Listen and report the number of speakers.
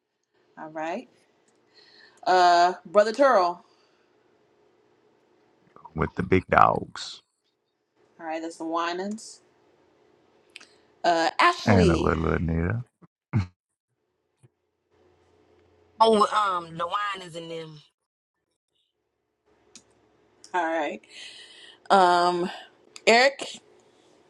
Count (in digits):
3